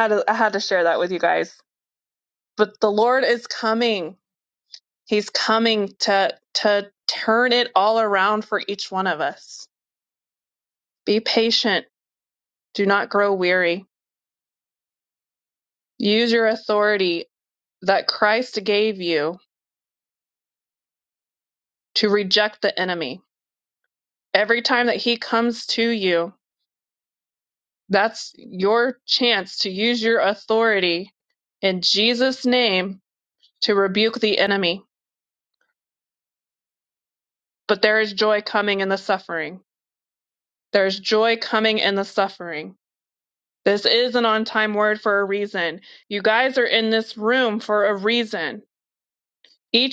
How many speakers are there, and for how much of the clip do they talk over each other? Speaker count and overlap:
1, no overlap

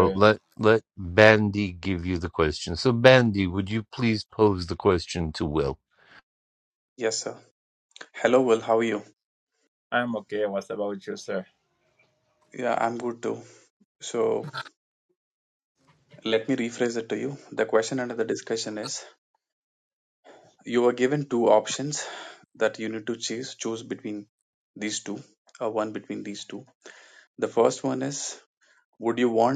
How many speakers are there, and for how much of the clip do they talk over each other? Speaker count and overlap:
3, about 1%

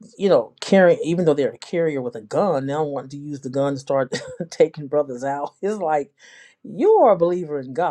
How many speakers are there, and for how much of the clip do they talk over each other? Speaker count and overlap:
1, no overlap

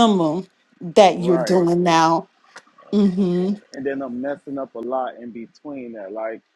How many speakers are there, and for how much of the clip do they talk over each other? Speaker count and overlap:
2, about 9%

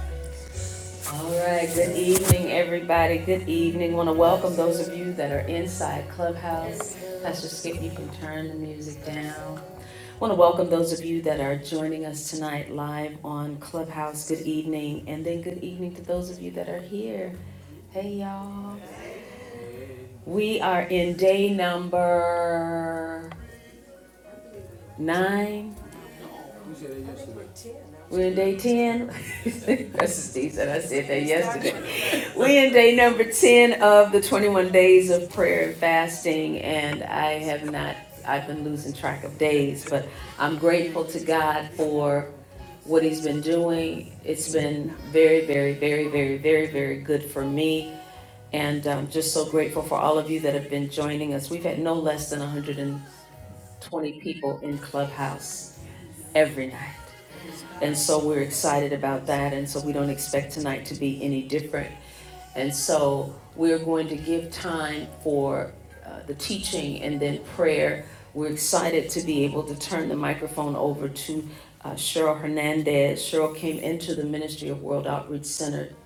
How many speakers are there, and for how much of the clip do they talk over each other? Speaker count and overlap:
1, no overlap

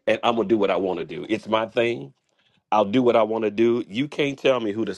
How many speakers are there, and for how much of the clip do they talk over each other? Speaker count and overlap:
1, no overlap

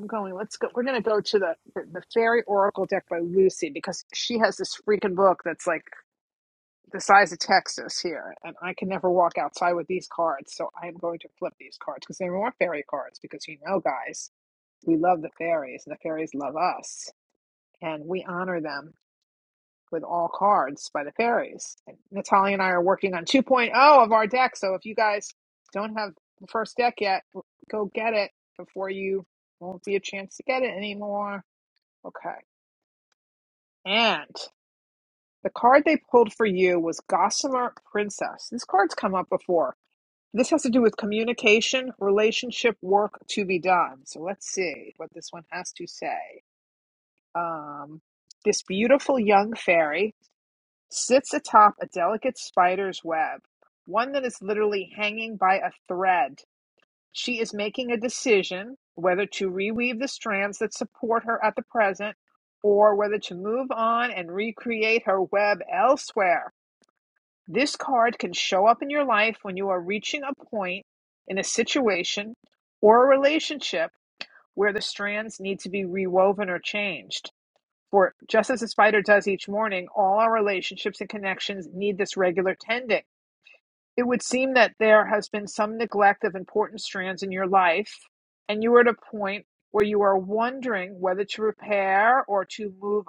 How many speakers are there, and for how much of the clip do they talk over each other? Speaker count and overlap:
1, no overlap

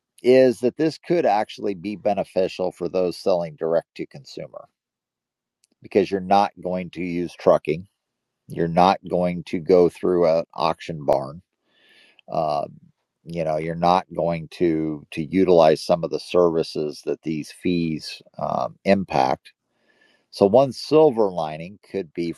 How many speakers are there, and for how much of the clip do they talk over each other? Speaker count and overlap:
1, no overlap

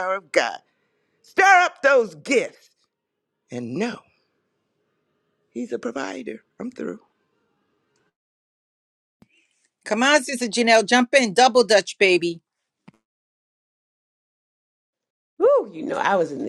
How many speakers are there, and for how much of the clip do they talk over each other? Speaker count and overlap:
3, no overlap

